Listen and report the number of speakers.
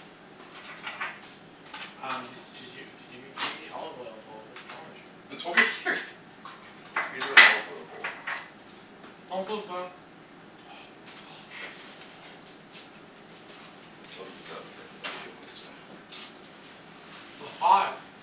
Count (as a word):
two